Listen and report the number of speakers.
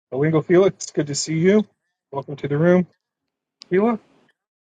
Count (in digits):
1